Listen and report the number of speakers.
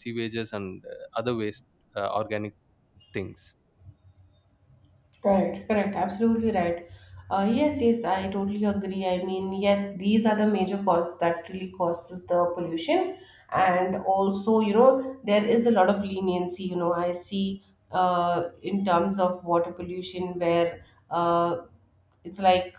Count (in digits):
2